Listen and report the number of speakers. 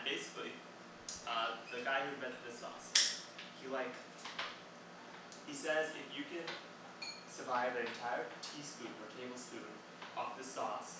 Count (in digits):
1